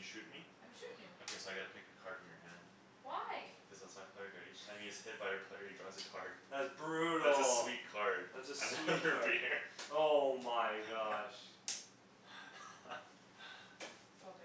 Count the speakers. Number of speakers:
three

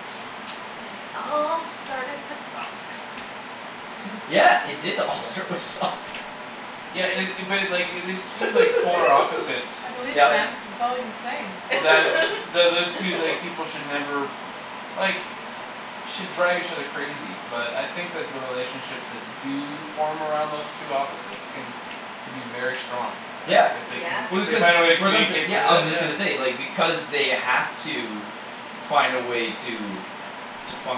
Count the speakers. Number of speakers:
four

